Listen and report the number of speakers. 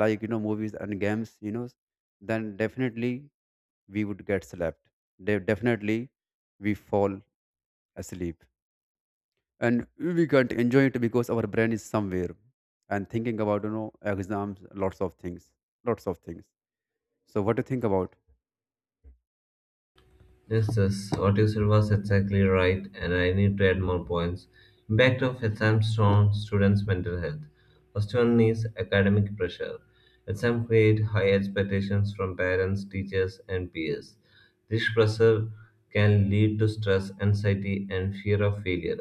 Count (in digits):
2